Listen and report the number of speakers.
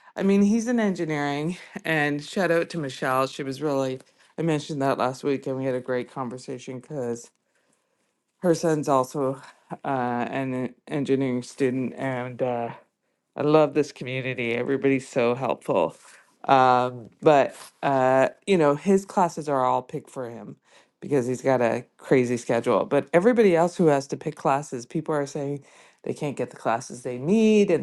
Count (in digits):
1